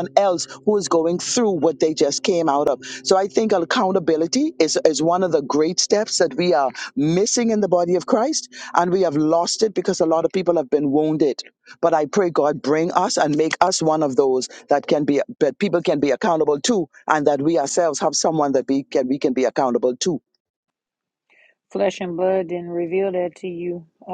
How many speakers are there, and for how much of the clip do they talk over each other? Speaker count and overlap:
2, no overlap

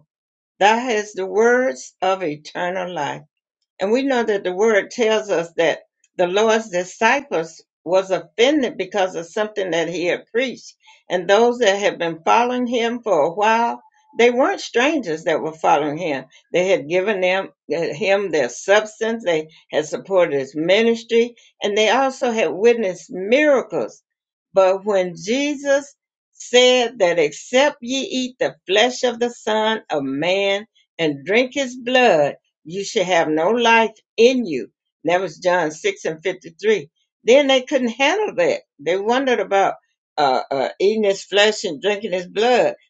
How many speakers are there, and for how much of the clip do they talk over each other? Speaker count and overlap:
1, no overlap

